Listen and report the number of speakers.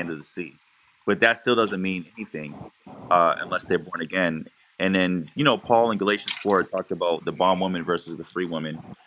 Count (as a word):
one